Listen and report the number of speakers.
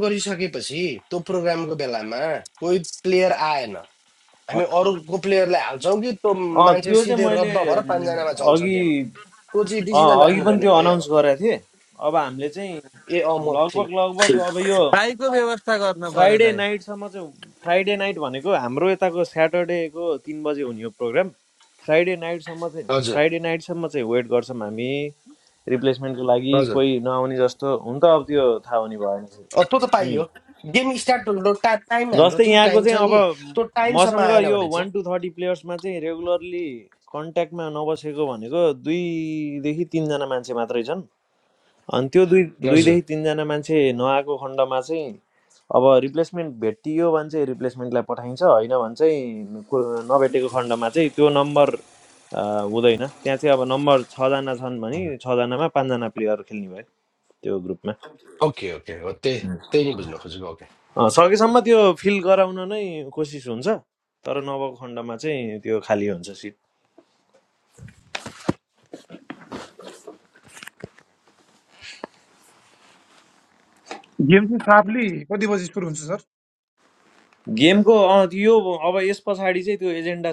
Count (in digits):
4